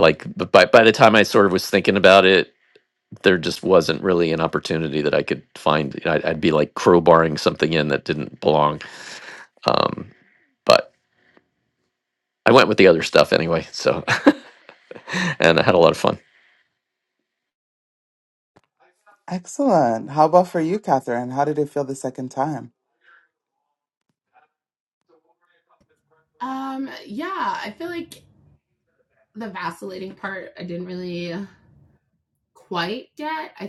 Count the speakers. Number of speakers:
3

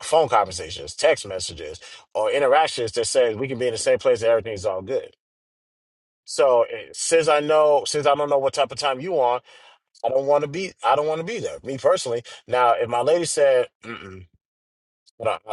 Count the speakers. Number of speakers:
1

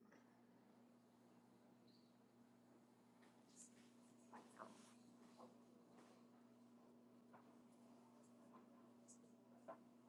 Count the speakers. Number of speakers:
0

